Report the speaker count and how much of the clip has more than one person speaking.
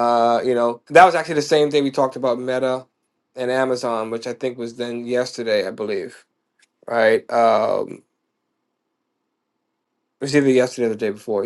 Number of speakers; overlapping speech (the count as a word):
one, no overlap